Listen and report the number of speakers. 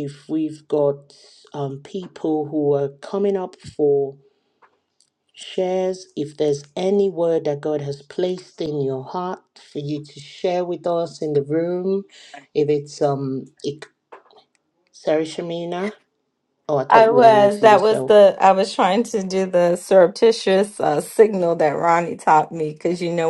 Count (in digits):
2